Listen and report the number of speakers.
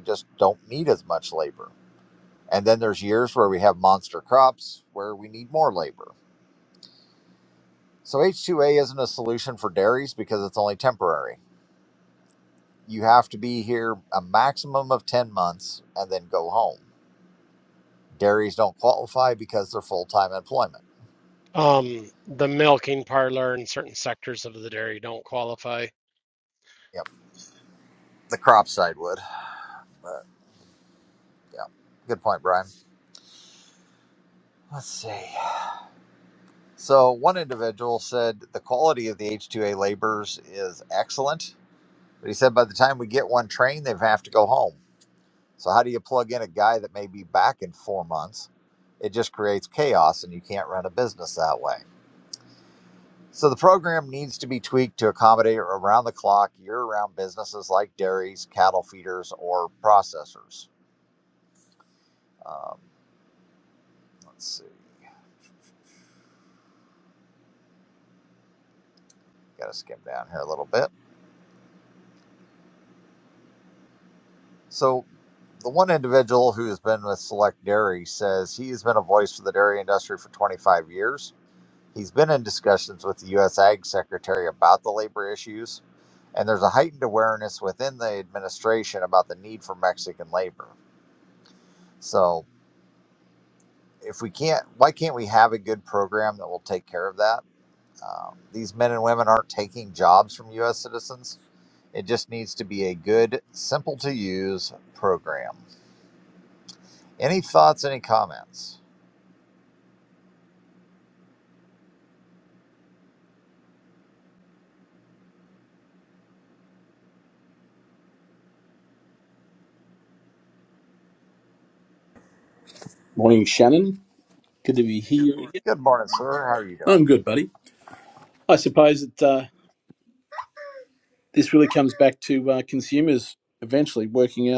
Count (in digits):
3